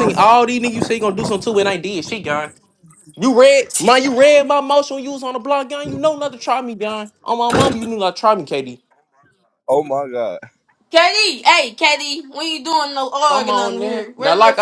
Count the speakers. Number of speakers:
three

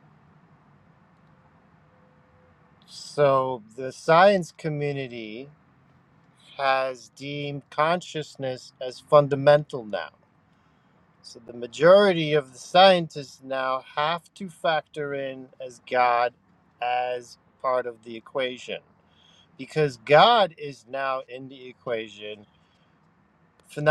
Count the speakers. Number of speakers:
one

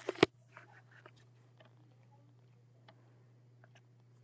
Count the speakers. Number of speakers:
zero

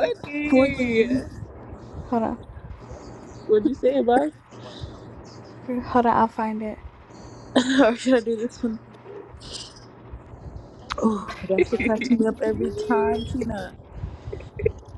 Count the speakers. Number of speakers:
three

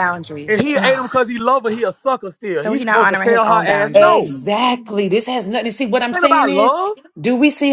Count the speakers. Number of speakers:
three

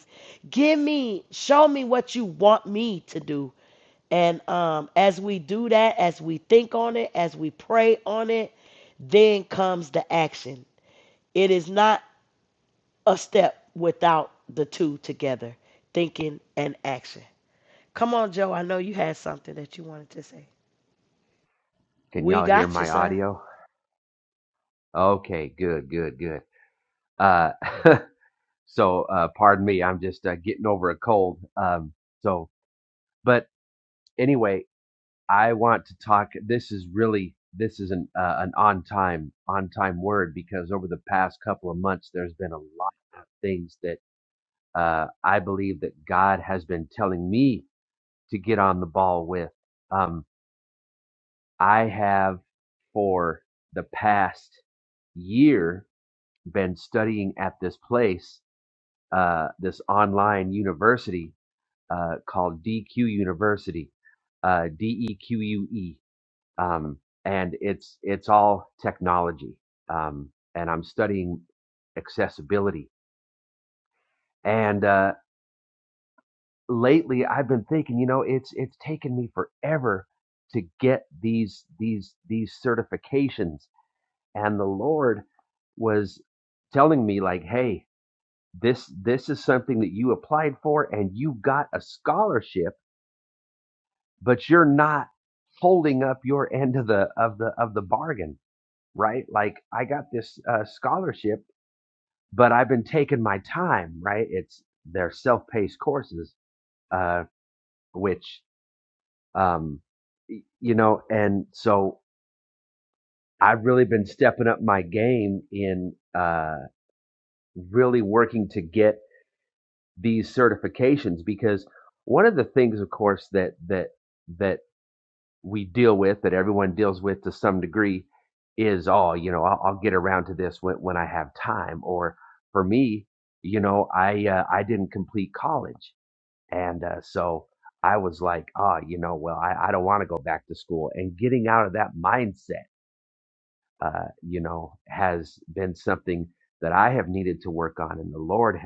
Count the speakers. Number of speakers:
two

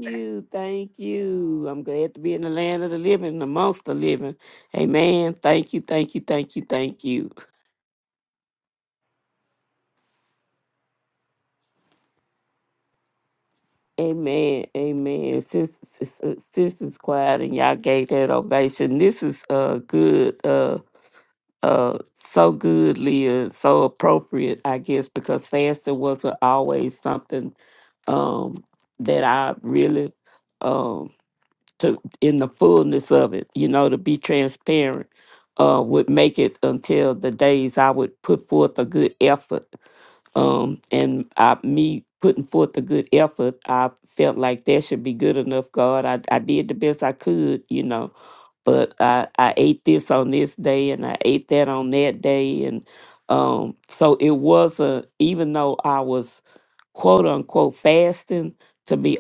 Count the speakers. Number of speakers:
one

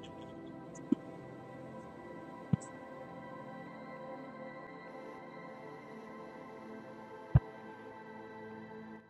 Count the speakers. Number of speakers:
zero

